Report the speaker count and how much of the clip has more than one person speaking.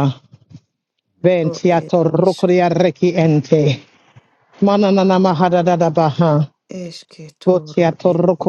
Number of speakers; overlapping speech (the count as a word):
two, about 25%